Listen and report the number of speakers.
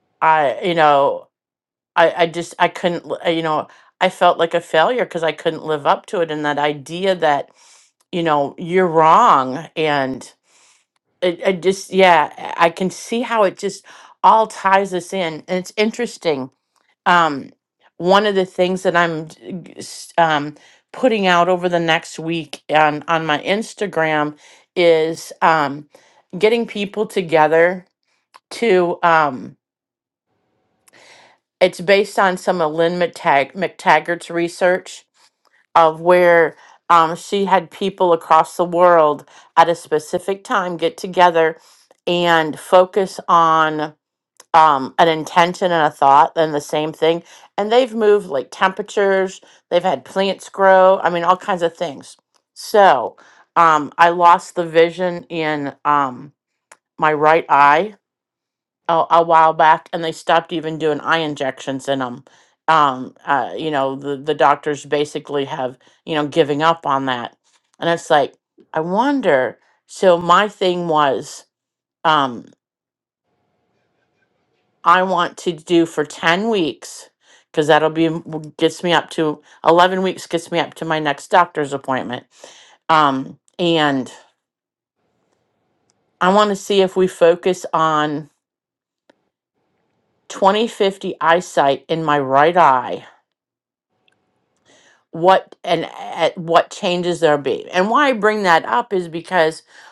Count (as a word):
one